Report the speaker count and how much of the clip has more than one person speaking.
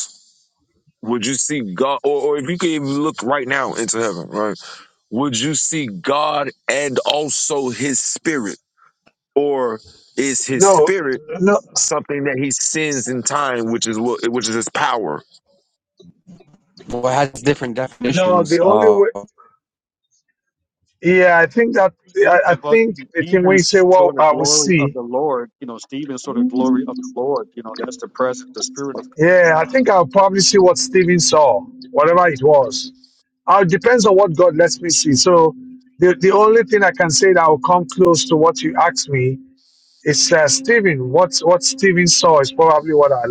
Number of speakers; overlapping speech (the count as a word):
four, about 7%